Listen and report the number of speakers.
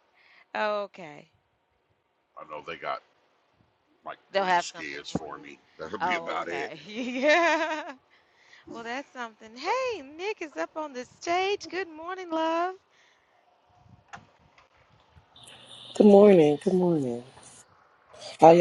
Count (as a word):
three